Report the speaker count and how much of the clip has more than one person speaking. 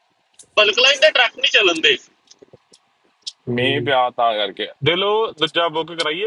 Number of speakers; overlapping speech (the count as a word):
three, about 6%